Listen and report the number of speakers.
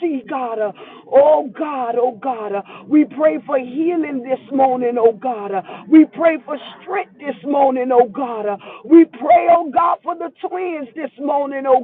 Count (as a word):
one